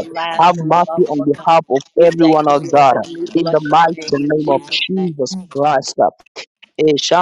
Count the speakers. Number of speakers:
two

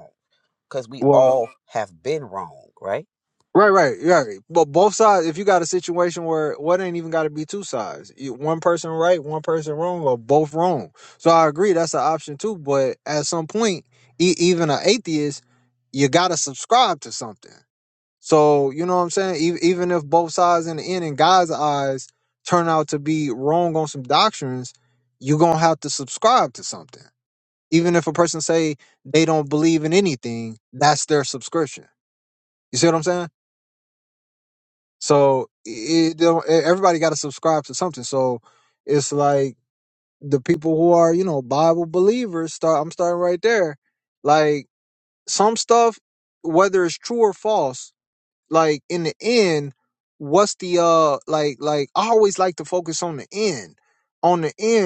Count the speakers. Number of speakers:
two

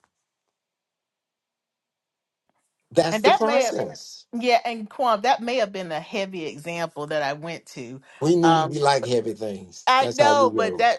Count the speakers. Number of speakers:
two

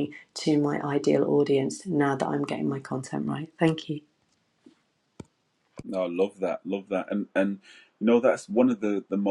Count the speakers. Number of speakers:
two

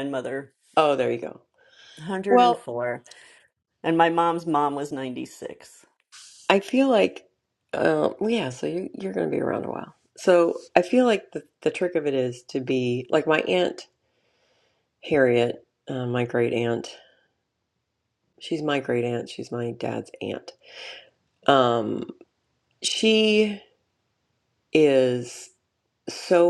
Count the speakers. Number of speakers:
two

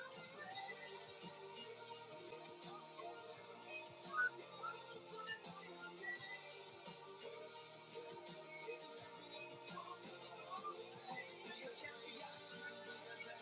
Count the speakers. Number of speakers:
zero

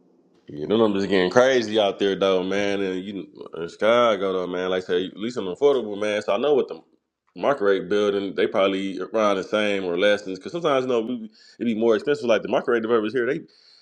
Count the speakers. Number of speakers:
one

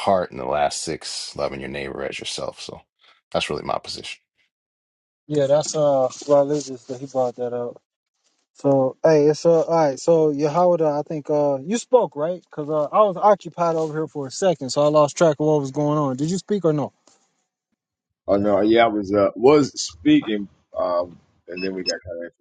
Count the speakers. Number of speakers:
three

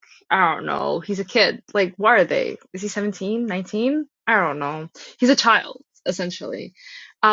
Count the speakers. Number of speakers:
one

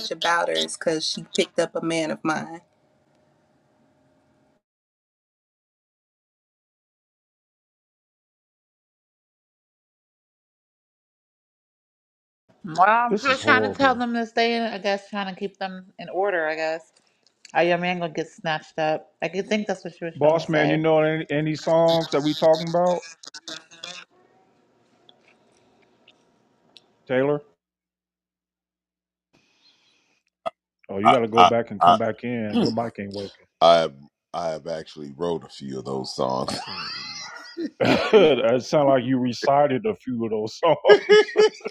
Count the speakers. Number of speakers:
four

